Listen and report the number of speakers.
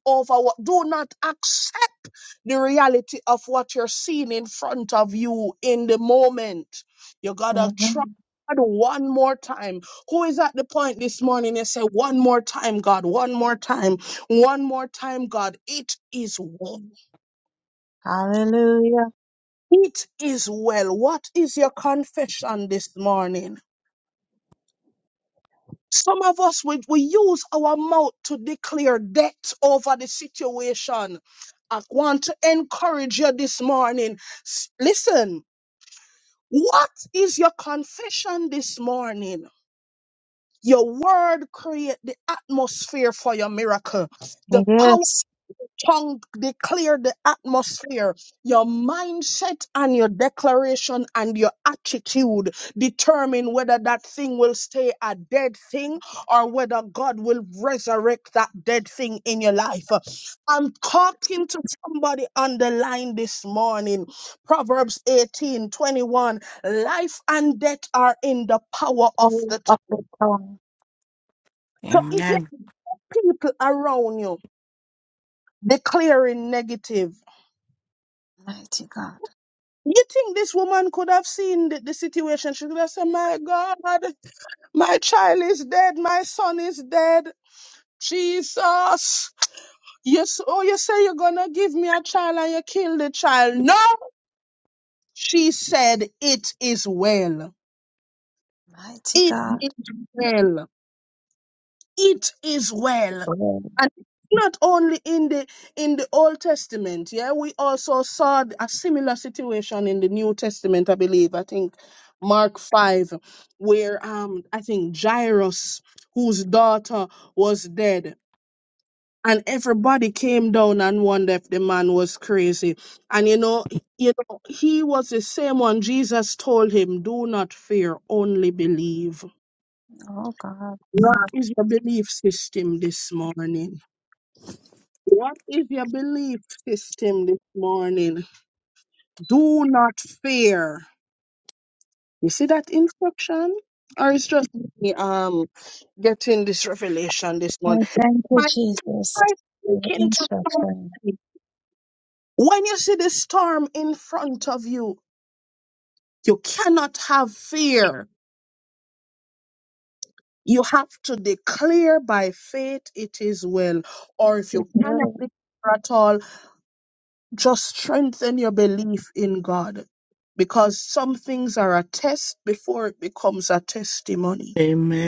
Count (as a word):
three